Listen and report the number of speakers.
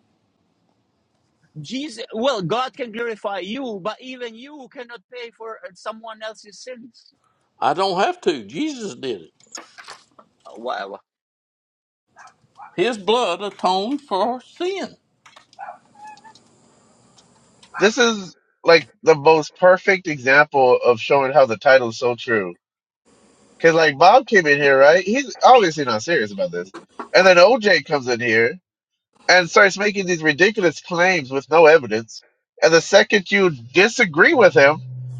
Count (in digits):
3